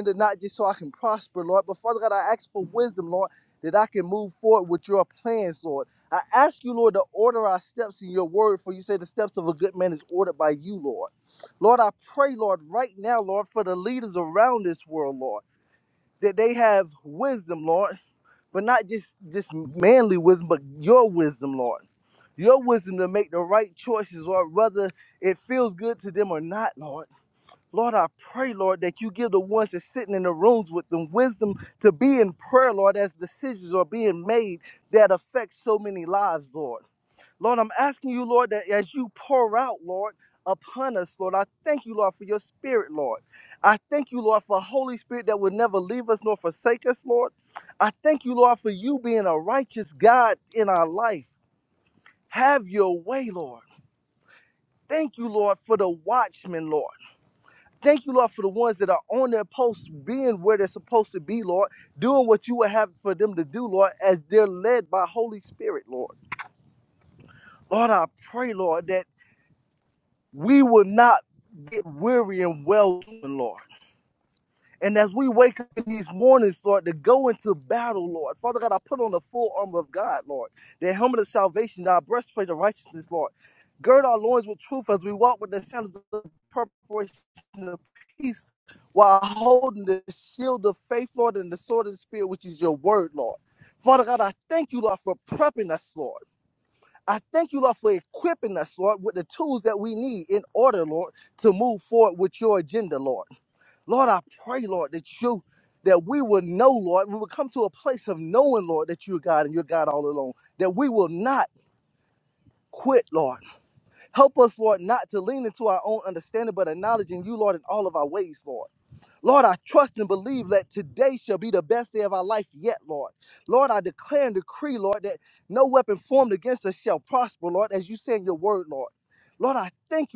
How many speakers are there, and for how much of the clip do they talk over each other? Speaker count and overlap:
one, no overlap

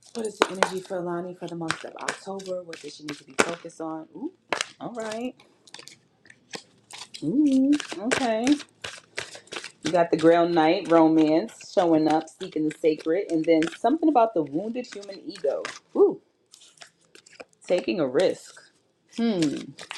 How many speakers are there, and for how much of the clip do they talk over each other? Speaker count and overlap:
one, no overlap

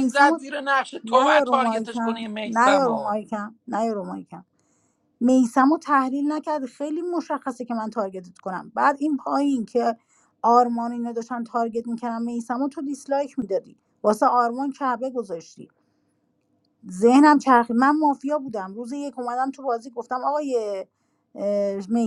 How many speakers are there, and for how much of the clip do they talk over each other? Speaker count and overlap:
two, about 11%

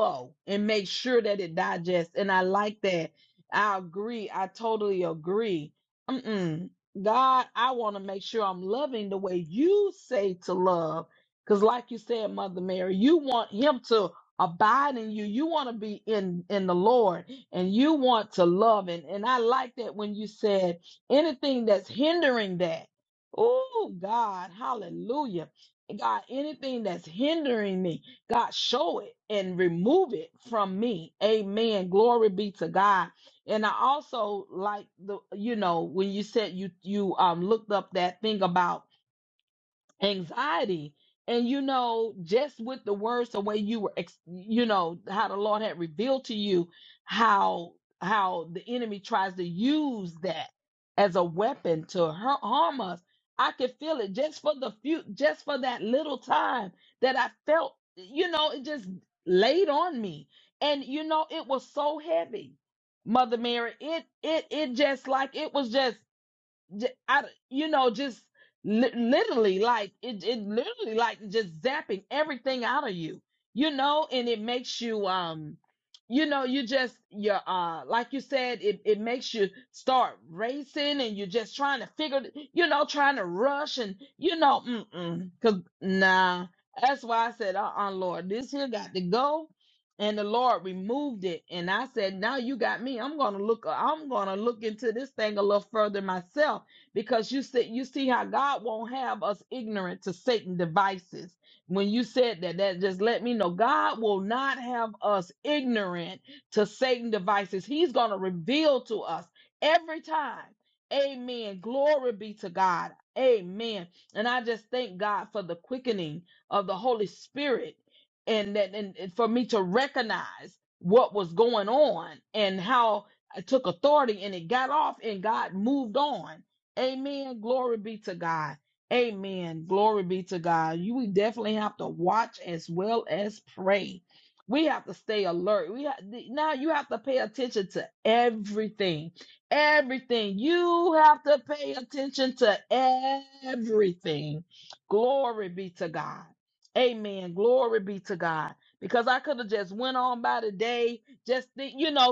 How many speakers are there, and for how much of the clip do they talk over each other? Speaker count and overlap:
one, no overlap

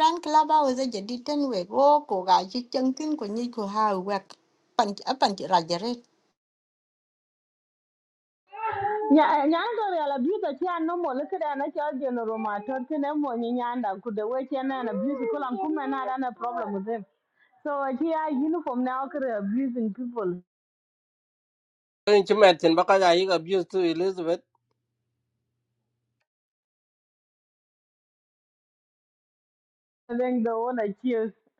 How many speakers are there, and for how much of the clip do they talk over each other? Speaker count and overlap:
three, no overlap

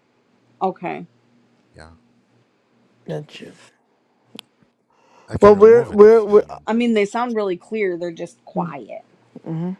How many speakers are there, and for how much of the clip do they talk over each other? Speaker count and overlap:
three, about 10%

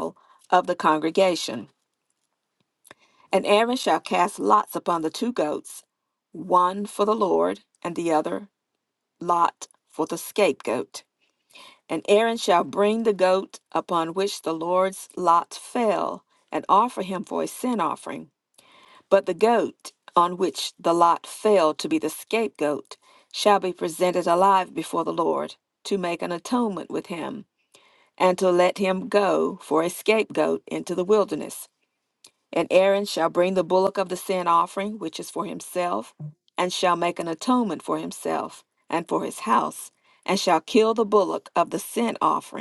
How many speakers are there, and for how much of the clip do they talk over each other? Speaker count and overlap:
one, no overlap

